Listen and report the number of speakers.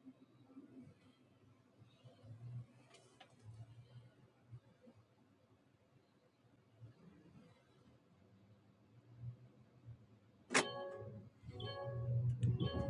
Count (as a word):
zero